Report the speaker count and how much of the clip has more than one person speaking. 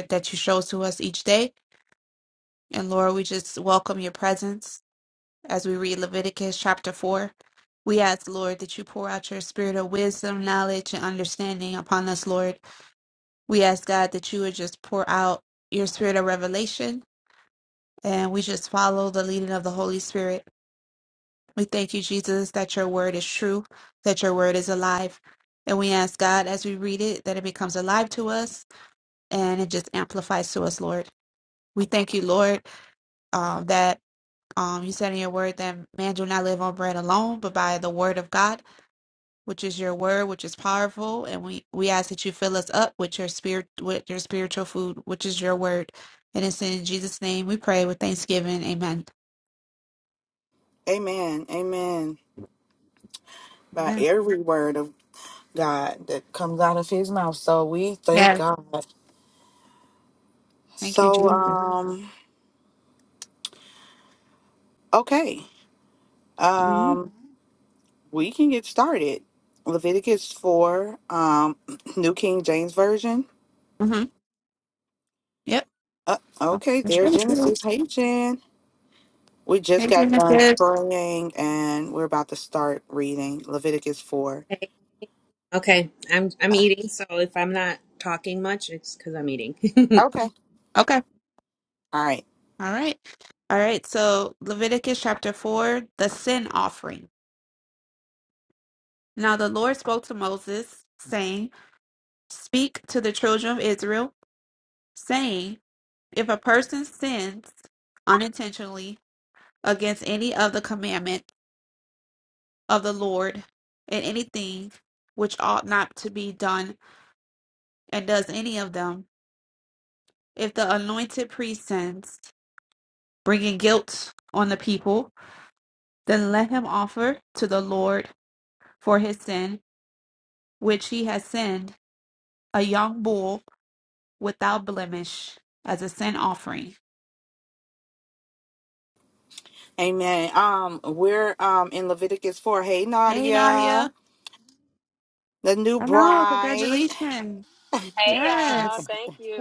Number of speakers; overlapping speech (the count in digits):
4, about 4%